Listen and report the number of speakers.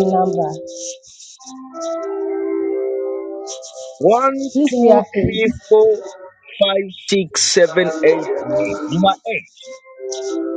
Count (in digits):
2